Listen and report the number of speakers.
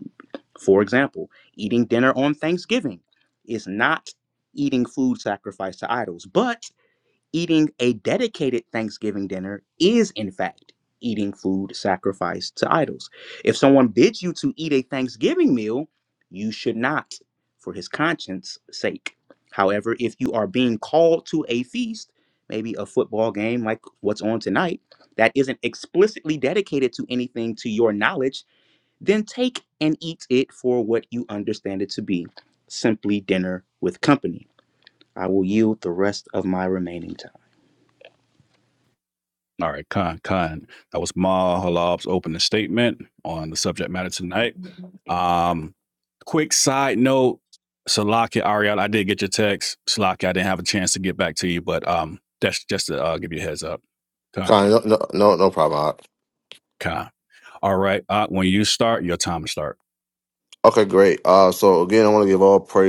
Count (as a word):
three